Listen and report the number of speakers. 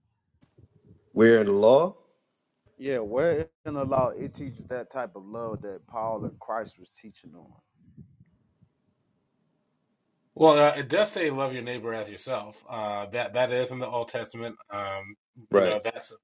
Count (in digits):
3